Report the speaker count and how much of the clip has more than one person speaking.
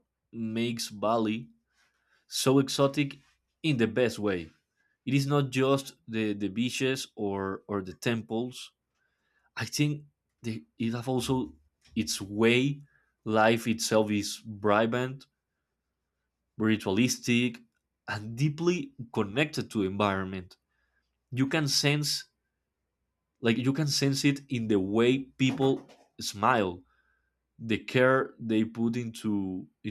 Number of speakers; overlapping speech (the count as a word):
one, no overlap